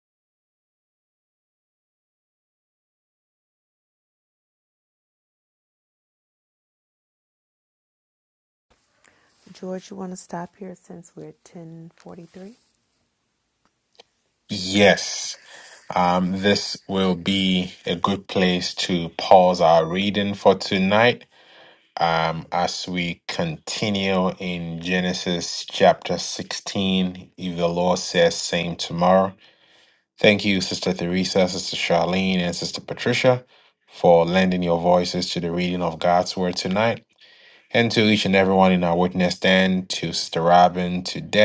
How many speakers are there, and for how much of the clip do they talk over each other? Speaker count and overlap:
2, no overlap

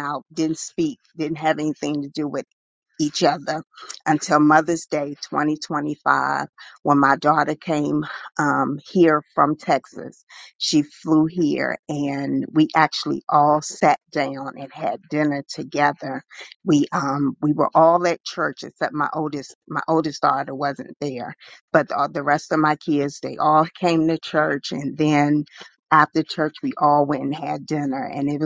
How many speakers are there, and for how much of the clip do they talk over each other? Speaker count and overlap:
1, no overlap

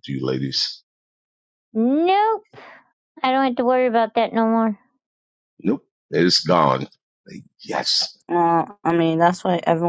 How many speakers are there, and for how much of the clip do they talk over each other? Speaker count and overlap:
3, no overlap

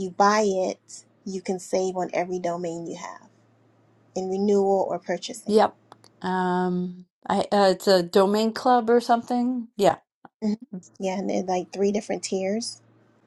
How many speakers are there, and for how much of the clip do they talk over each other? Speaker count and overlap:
2, about 1%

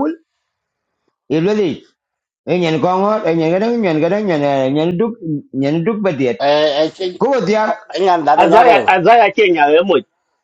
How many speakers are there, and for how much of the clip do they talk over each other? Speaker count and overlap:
3, about 6%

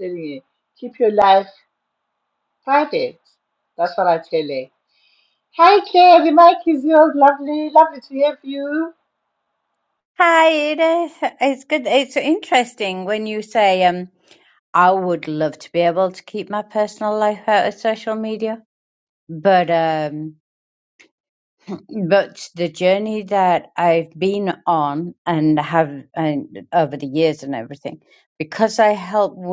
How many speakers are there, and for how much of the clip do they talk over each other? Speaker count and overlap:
2, no overlap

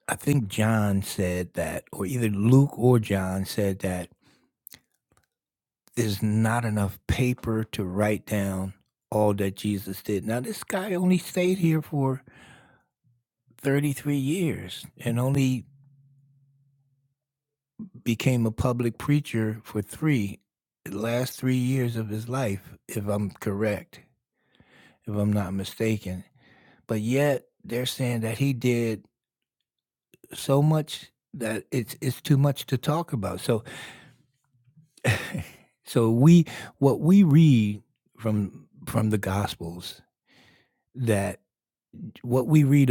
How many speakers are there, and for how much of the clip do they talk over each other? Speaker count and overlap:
1, no overlap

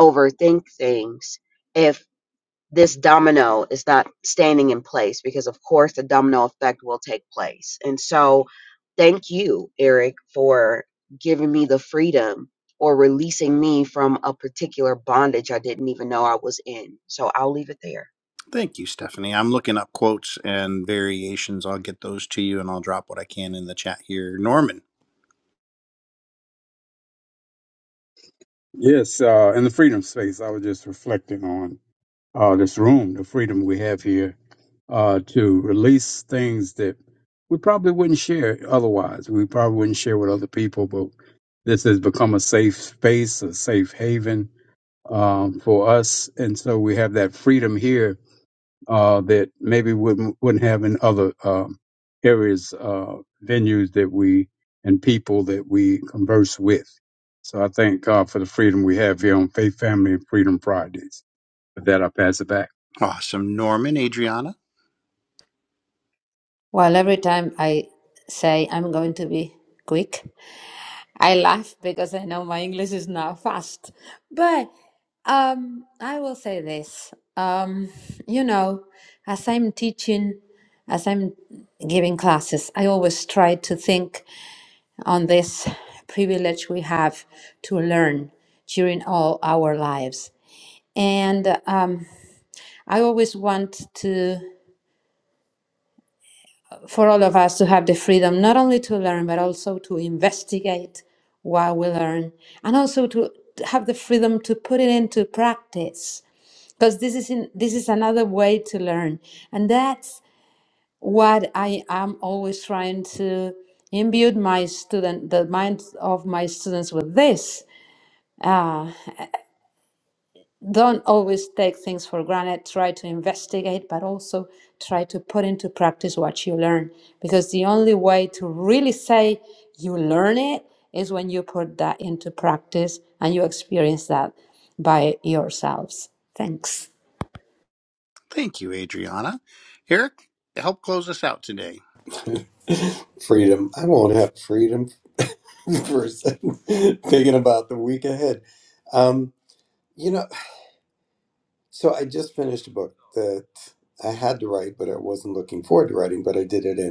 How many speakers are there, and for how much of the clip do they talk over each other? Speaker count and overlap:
5, no overlap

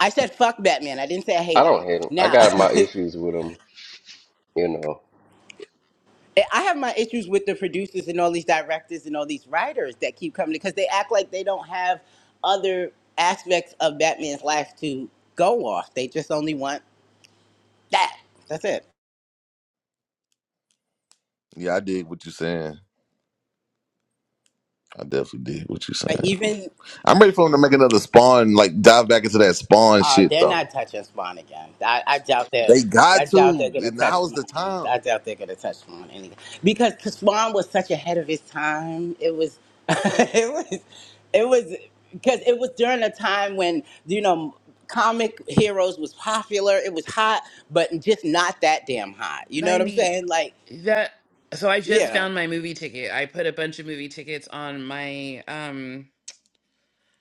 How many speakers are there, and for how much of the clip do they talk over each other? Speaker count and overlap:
4, about 7%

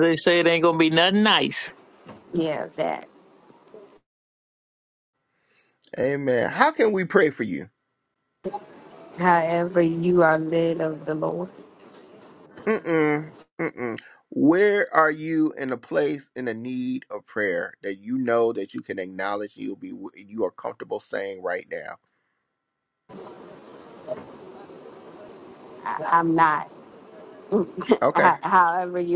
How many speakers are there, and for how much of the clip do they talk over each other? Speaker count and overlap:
3, no overlap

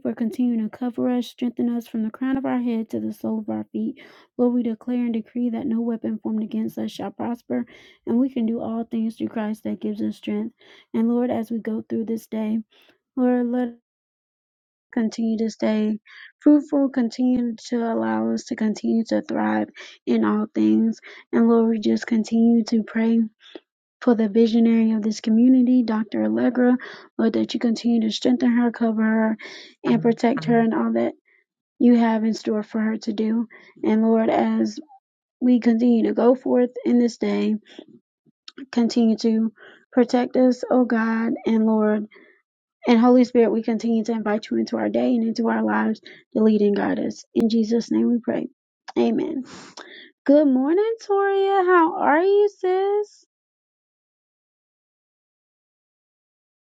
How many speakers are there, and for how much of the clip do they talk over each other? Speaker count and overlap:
1, no overlap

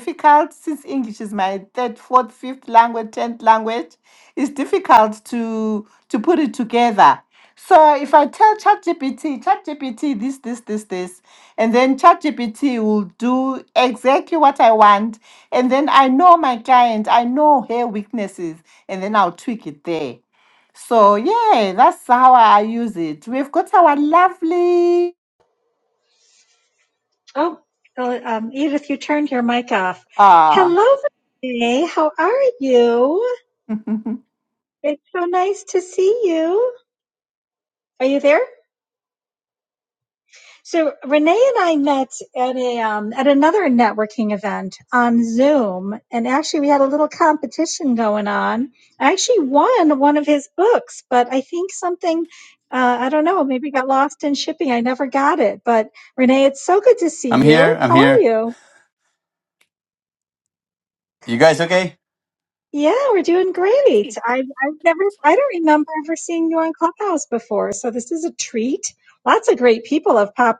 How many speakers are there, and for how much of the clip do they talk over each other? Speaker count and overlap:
3, about 2%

